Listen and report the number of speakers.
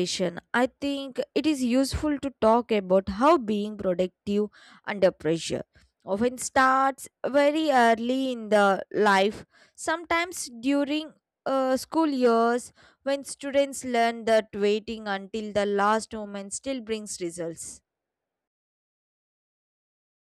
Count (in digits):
1